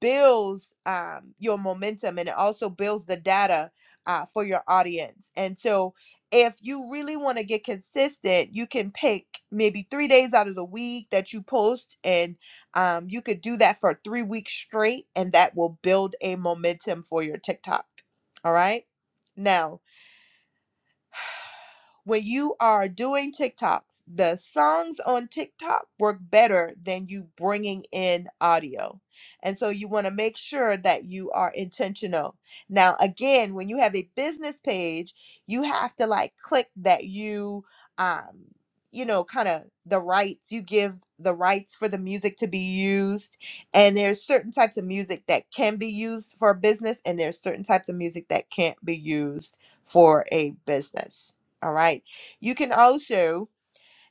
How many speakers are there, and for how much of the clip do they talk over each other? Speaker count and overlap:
1, no overlap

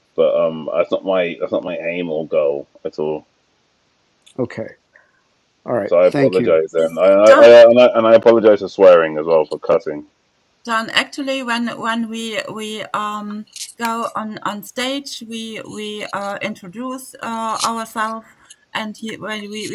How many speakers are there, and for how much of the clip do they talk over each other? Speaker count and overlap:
3, about 5%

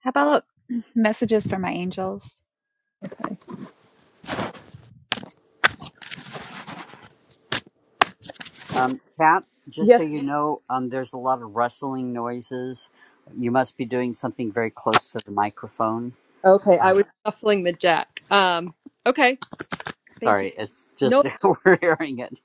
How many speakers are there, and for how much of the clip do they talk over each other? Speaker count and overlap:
3, about 4%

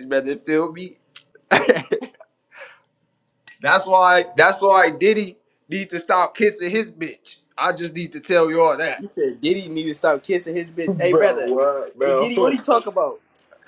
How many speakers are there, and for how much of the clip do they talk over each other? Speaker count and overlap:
3, about 8%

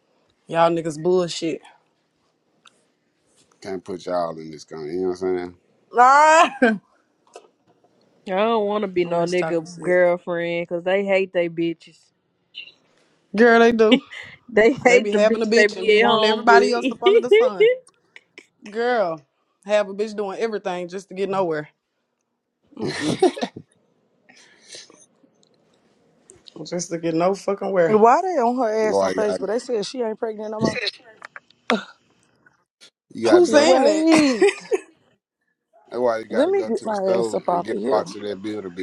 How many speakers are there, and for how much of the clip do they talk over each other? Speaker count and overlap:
4, about 16%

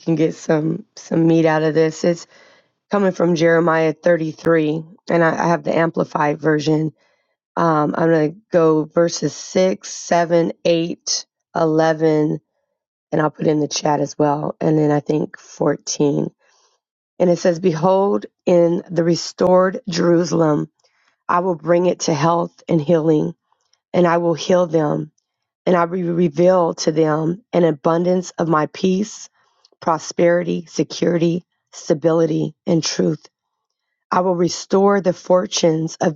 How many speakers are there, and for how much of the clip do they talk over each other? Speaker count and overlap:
1, no overlap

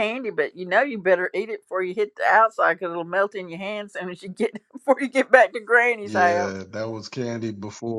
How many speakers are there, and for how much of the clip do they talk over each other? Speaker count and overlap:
2, about 6%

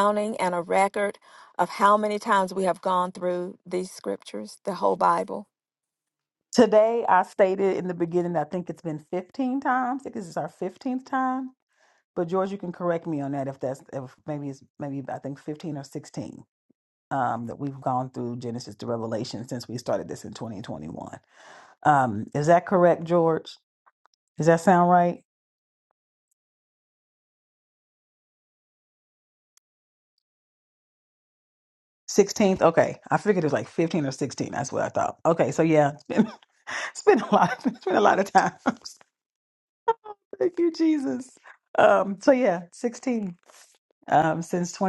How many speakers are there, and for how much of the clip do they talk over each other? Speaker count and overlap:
2, no overlap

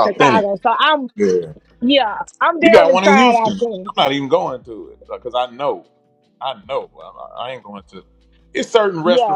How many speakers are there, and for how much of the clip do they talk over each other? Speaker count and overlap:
2, about 22%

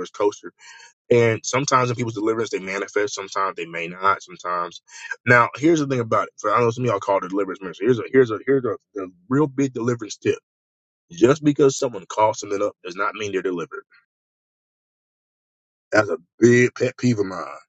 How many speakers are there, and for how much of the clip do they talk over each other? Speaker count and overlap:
1, no overlap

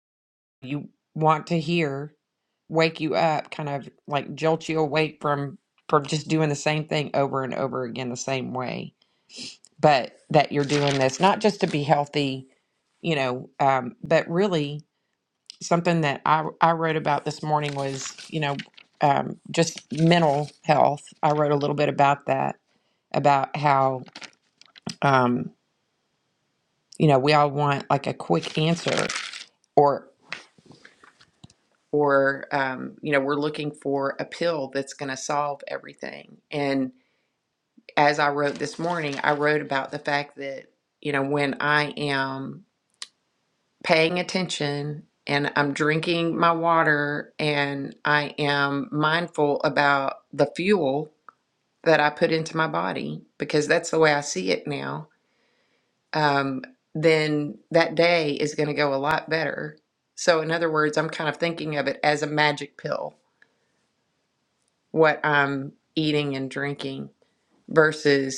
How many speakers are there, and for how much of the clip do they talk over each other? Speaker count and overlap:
1, no overlap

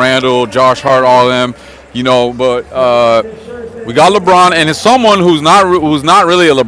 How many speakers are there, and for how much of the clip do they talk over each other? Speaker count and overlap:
1, no overlap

